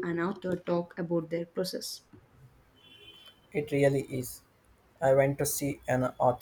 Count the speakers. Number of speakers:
2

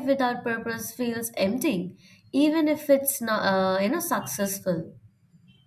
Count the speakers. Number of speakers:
1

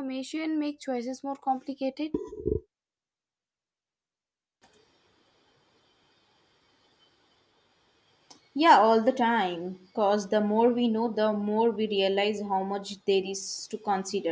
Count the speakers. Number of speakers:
2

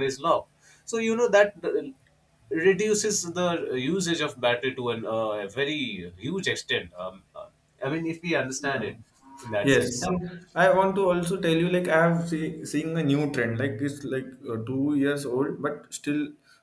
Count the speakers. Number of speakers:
2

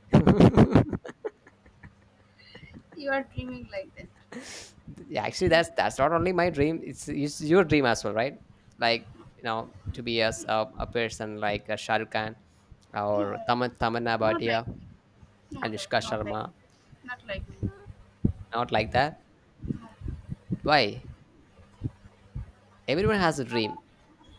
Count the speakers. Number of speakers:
2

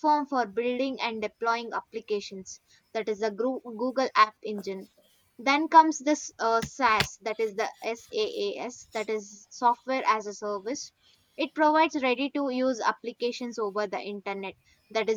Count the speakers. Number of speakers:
1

